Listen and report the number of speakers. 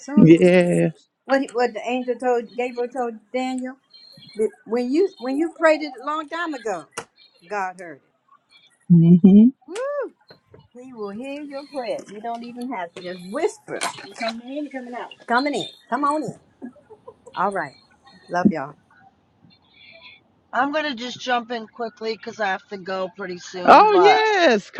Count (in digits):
3